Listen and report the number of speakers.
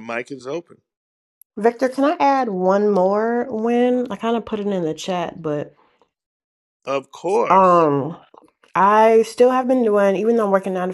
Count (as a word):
two